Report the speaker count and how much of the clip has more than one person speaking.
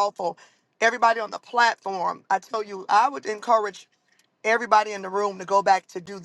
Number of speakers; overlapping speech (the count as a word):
one, no overlap